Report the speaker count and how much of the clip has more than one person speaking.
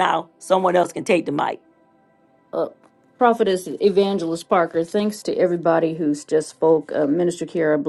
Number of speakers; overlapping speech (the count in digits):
2, no overlap